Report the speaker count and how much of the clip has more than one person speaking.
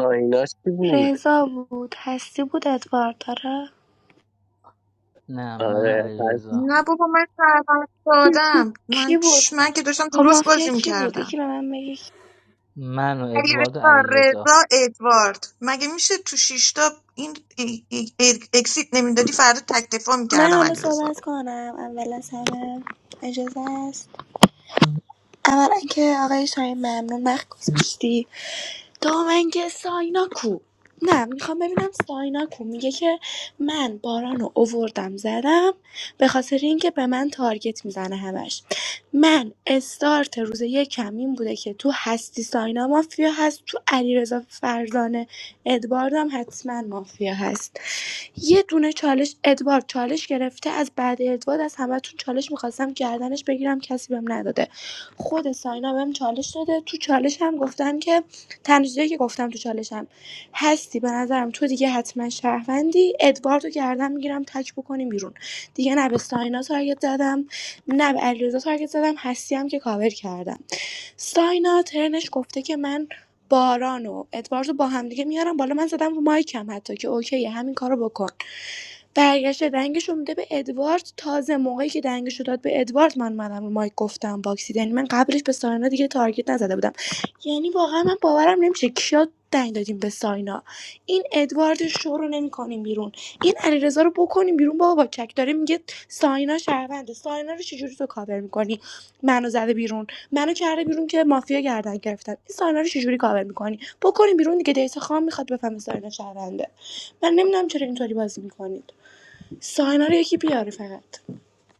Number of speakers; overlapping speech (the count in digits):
4, about 5%